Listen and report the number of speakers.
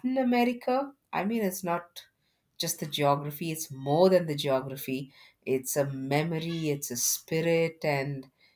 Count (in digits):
1